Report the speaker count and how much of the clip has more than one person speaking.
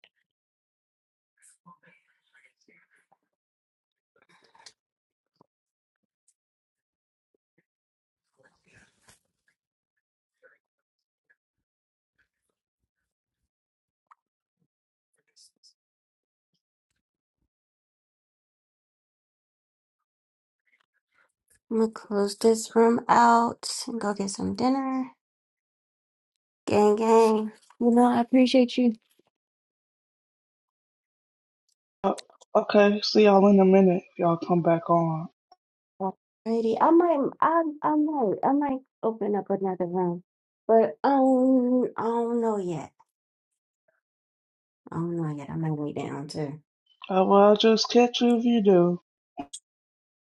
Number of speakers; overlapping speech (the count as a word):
two, no overlap